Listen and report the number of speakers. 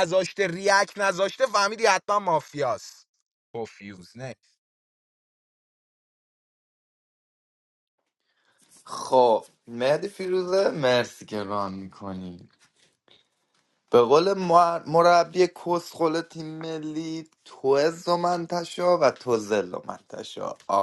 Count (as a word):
two